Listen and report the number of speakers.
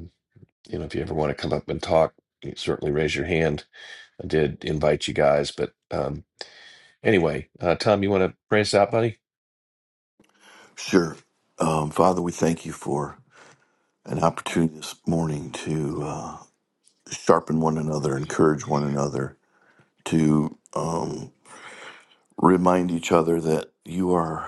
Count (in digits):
2